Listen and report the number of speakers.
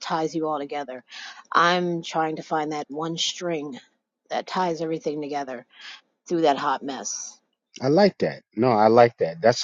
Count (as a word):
two